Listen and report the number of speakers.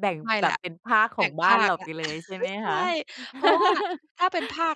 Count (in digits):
2